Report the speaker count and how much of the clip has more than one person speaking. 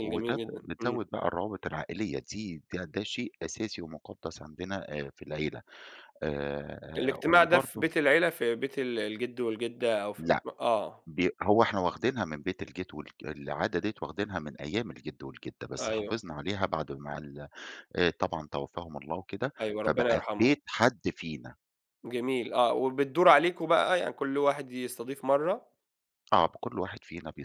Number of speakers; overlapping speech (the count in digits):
2, about 12%